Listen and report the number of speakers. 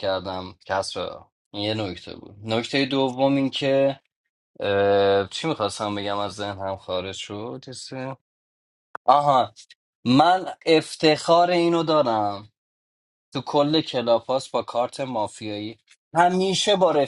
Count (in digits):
1